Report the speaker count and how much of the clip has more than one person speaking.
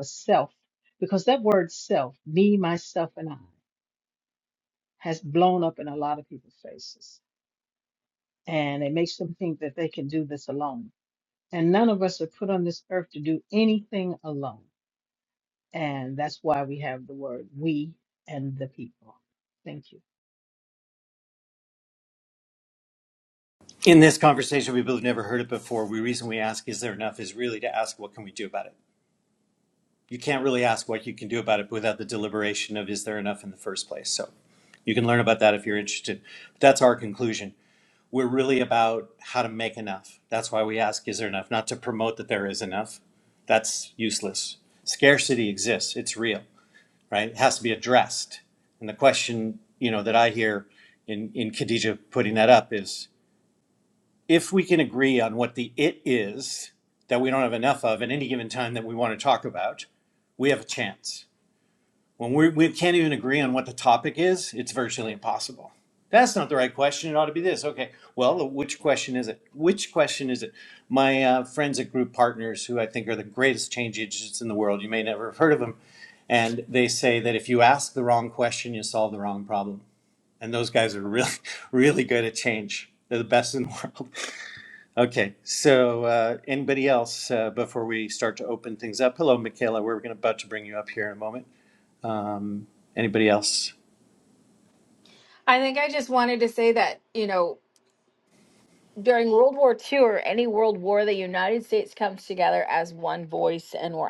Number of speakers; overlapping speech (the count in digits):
3, no overlap